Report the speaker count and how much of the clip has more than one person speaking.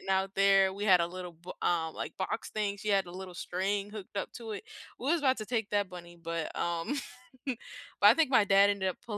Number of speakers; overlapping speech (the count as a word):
one, no overlap